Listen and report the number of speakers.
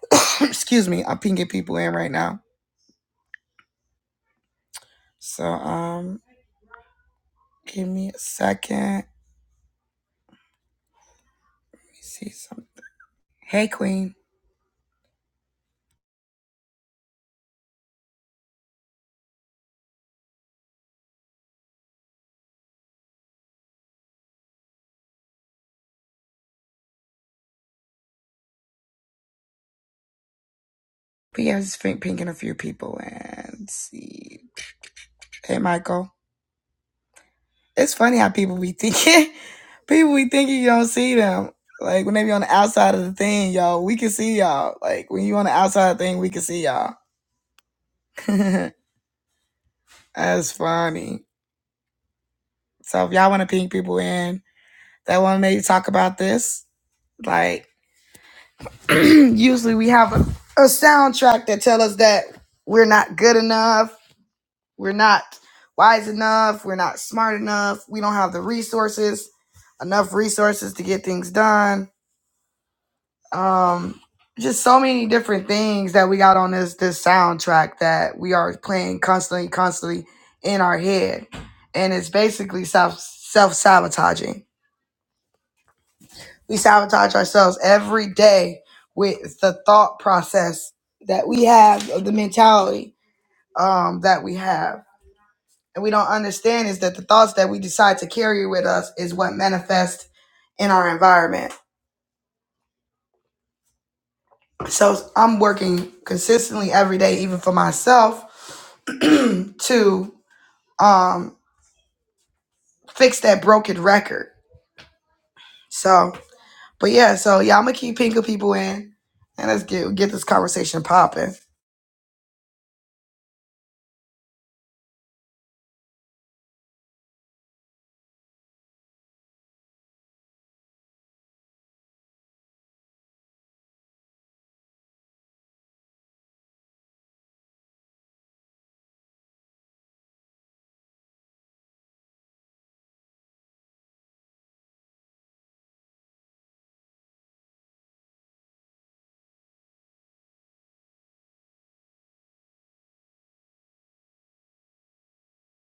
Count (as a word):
one